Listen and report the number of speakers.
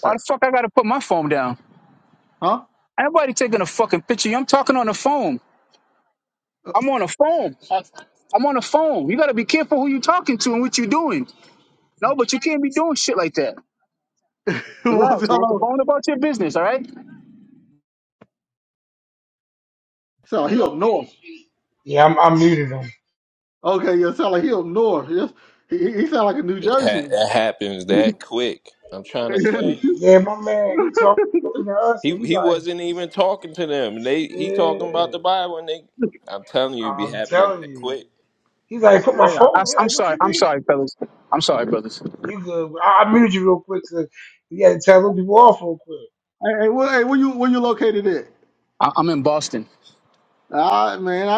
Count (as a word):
four